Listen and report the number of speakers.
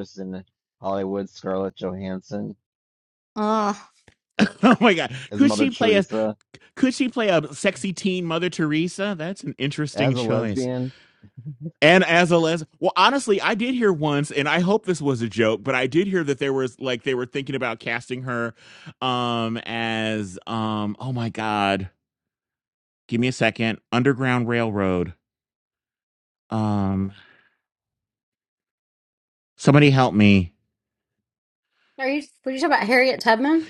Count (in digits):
3